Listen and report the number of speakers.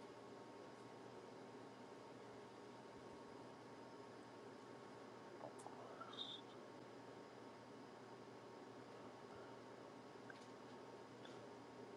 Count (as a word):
zero